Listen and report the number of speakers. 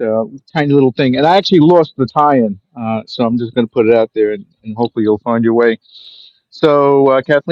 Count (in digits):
1